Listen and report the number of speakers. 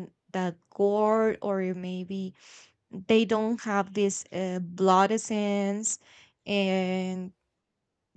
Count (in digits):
1